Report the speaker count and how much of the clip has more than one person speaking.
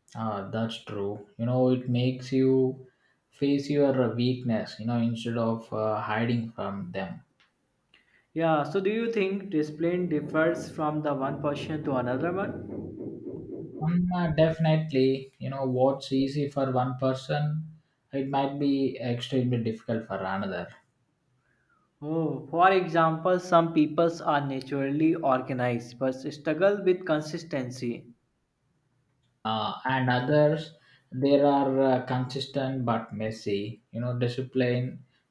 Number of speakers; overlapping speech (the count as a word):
two, no overlap